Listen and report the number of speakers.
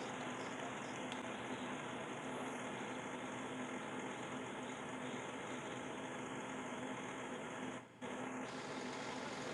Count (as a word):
zero